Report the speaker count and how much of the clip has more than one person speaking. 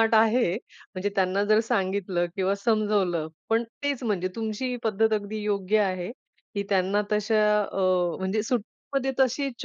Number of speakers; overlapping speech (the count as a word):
one, no overlap